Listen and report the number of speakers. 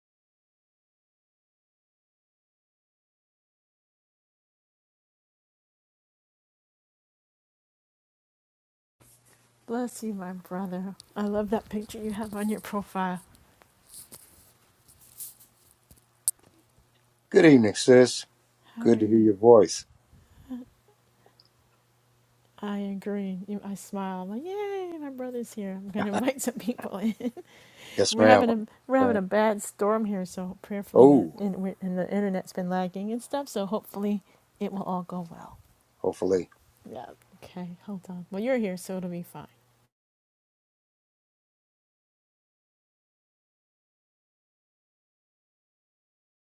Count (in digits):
2